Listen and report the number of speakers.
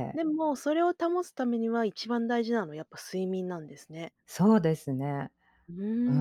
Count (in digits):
2